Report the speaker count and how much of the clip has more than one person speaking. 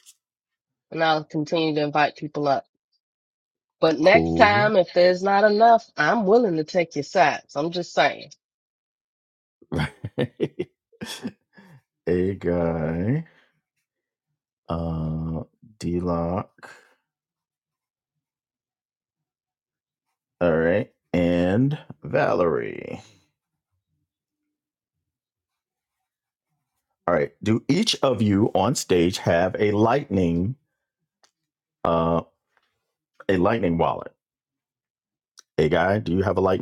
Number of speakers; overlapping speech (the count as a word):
two, about 2%